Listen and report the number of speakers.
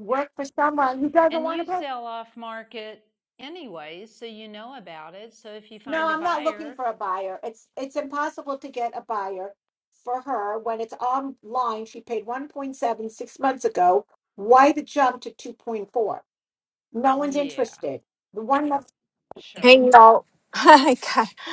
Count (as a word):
three